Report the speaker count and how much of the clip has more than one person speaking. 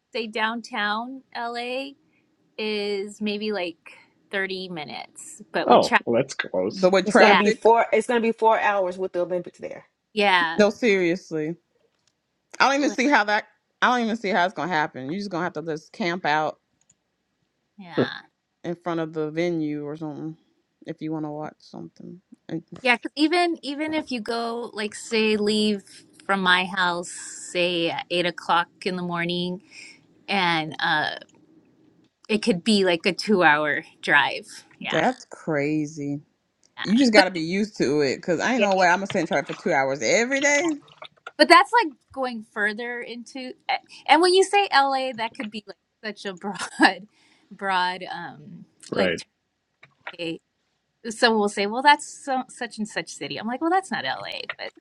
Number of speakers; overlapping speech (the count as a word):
four, about 4%